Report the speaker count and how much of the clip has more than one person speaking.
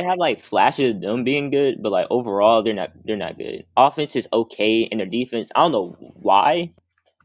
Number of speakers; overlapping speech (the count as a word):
one, no overlap